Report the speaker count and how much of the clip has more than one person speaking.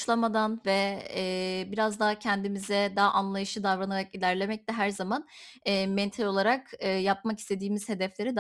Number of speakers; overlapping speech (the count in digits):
1, no overlap